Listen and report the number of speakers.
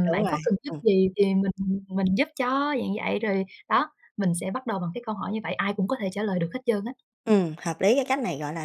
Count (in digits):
2